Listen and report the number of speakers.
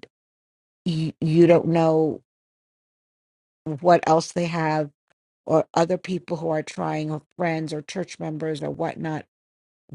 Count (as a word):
one